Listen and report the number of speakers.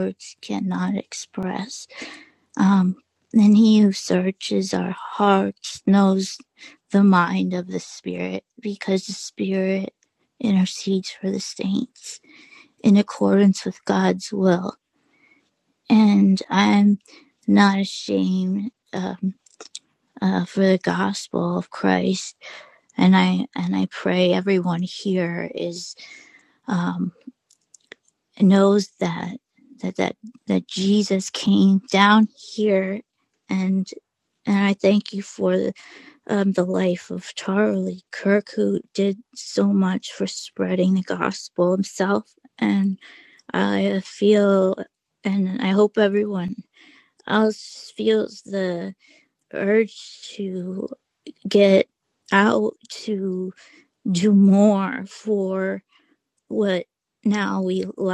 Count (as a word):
one